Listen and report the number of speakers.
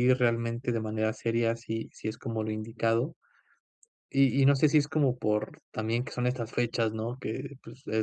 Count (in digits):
1